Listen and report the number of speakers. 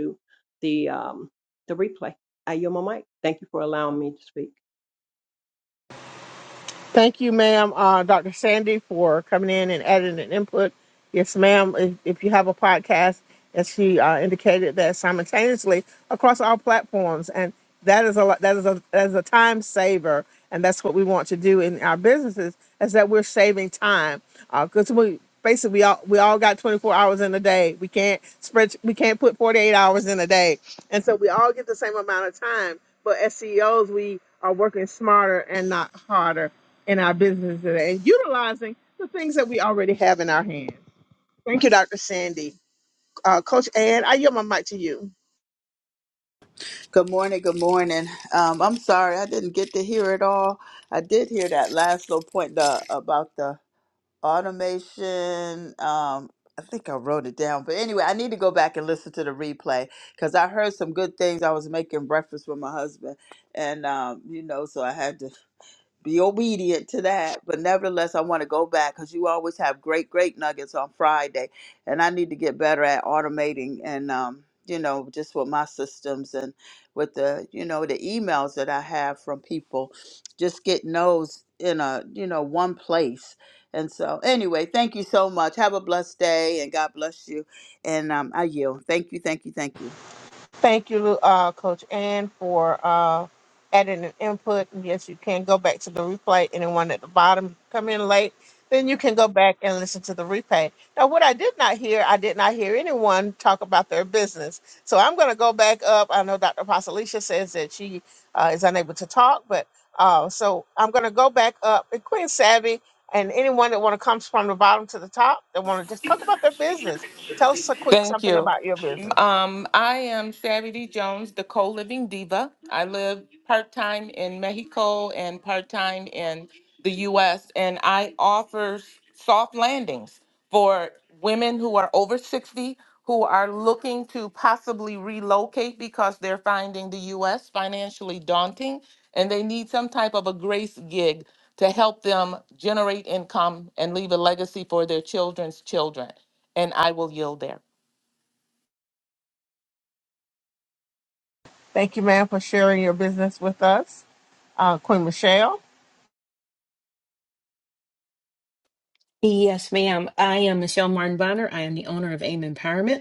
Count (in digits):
5